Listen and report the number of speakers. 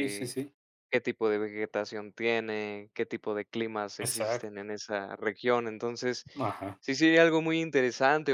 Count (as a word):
two